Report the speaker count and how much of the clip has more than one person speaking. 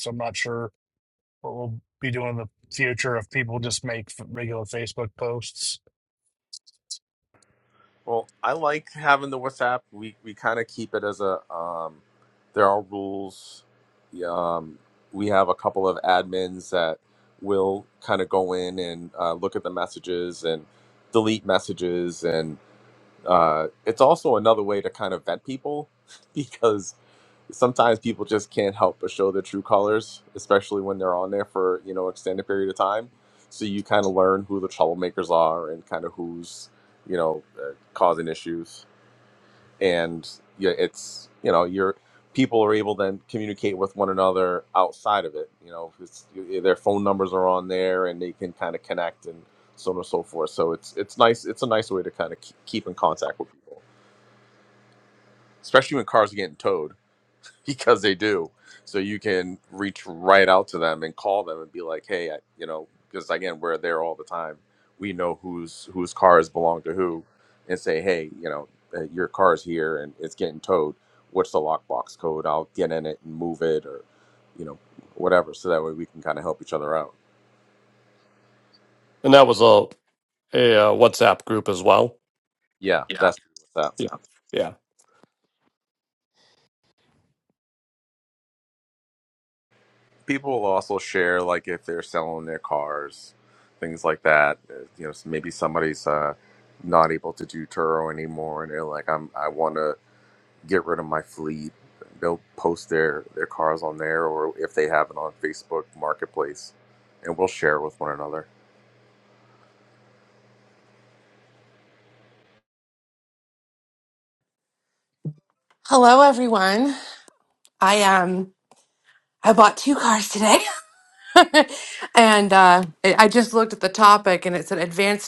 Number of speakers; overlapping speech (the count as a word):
four, no overlap